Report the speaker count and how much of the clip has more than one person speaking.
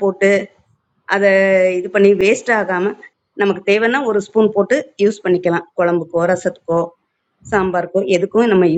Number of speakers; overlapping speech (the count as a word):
one, no overlap